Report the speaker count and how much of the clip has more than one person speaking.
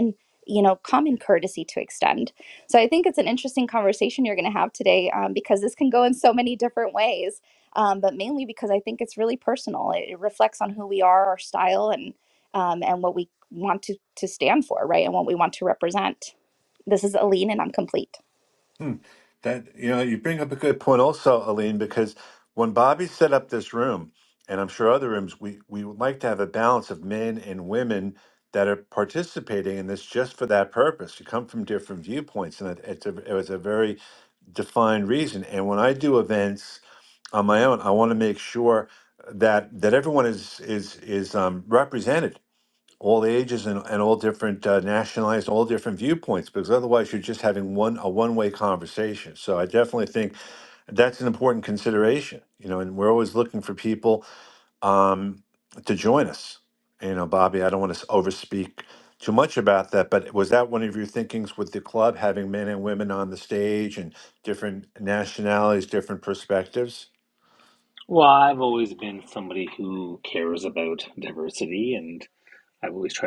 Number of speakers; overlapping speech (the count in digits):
3, no overlap